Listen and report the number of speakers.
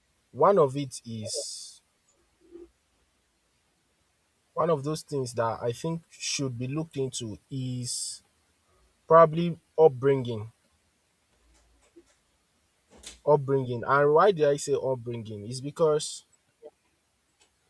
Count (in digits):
1